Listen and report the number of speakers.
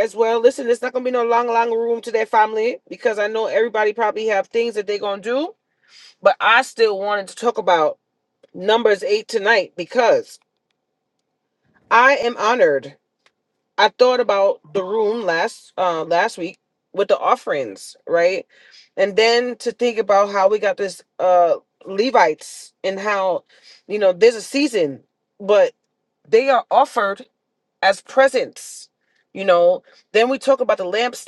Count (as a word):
one